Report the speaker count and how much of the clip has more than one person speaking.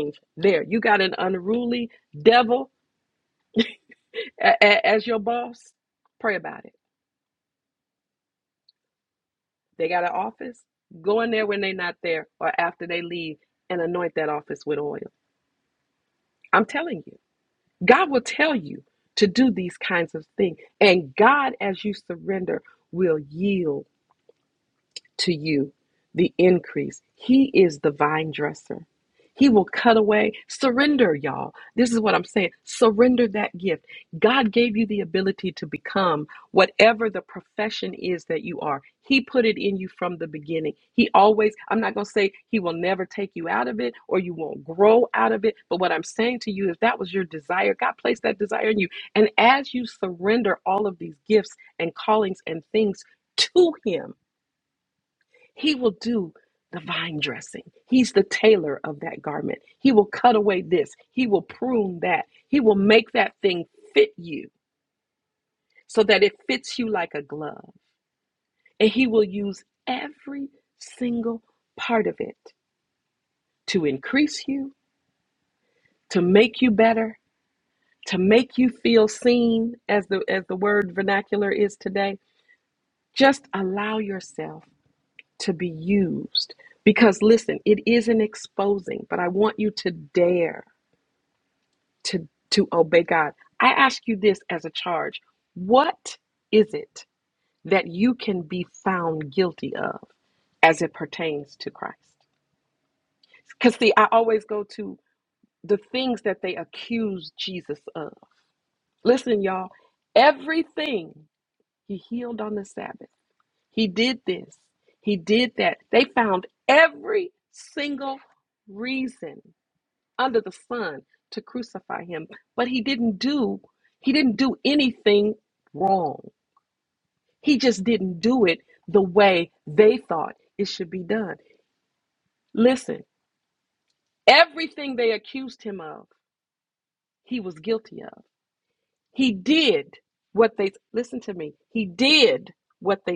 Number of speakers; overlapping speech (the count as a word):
one, no overlap